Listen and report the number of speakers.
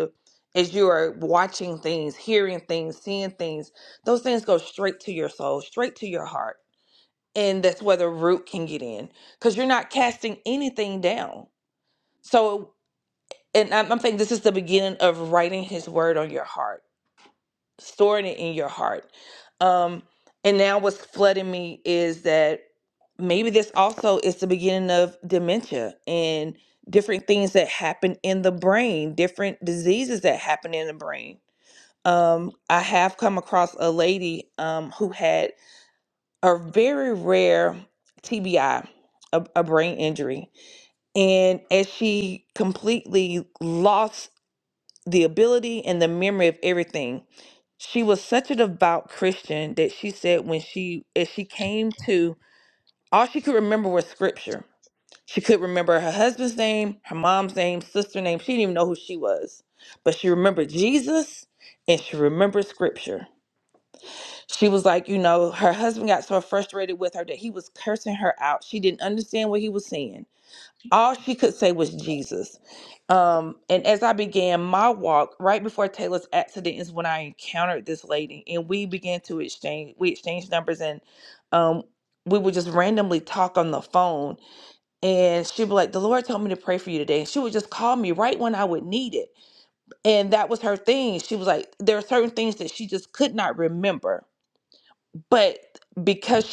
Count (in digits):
1